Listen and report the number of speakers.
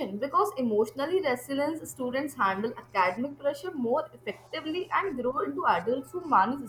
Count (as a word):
one